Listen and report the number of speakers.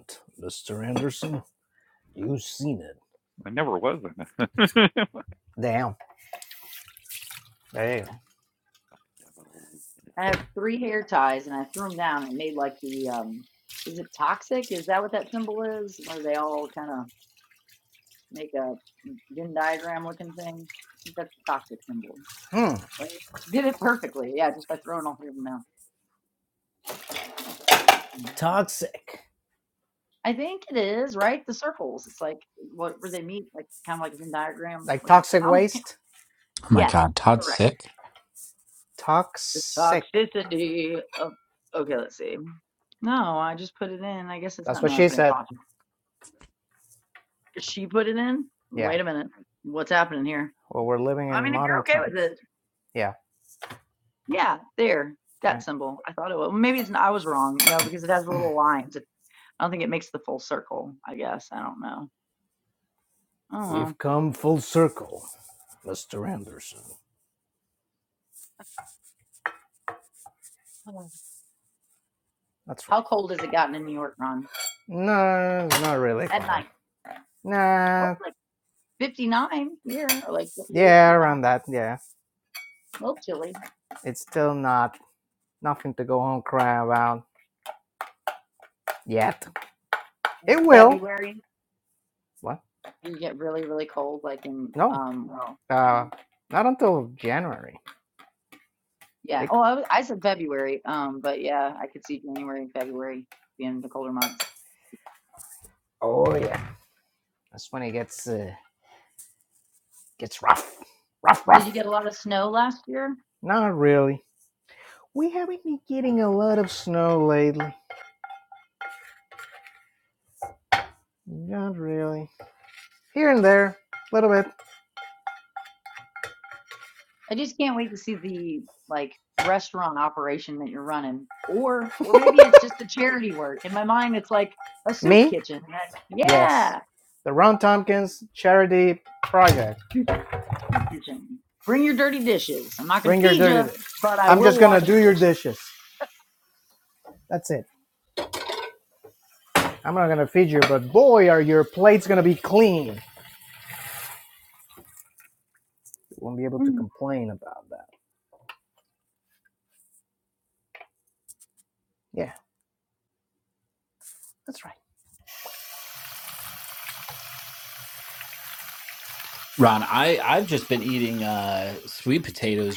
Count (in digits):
4